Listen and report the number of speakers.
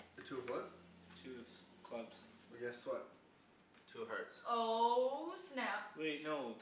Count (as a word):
three